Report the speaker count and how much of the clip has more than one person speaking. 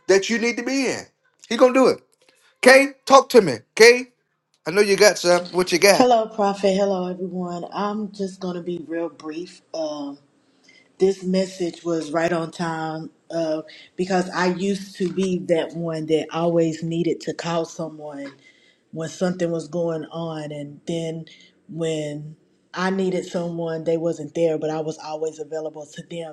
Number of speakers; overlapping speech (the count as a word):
two, about 1%